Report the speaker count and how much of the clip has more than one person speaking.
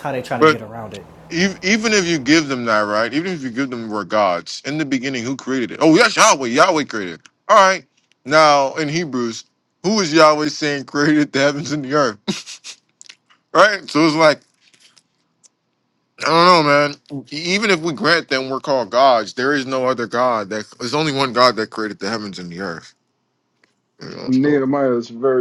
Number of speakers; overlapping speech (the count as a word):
three, about 2%